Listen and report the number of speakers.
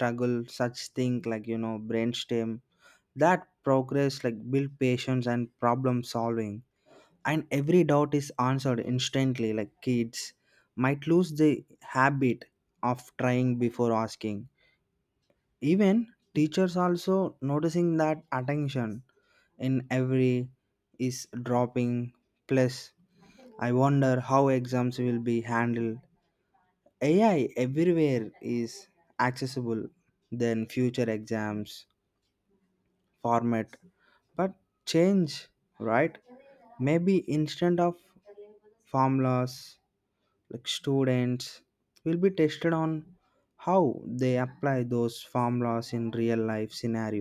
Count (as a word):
one